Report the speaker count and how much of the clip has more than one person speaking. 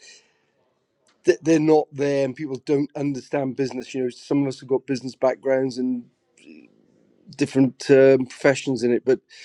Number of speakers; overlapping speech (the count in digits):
1, no overlap